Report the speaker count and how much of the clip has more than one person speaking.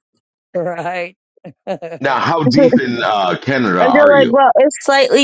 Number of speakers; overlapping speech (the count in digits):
3, about 17%